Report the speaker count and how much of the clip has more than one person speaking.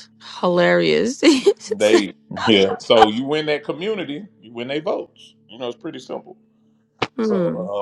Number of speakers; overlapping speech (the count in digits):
2, about 4%